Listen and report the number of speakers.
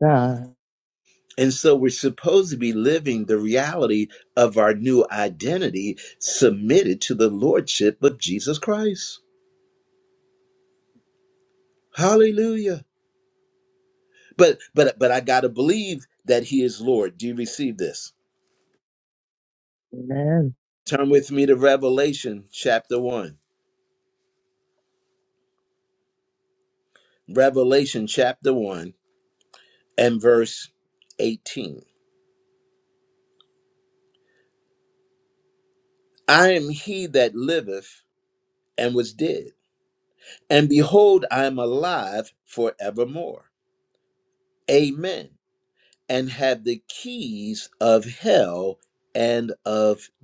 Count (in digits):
2